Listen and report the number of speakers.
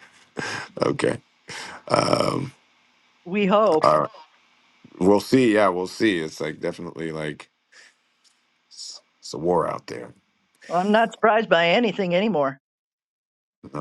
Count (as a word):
two